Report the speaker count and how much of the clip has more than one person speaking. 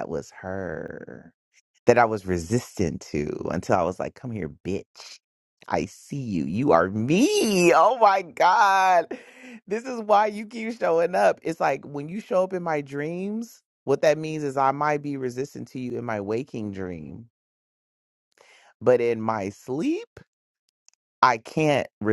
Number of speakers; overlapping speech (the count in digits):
1, no overlap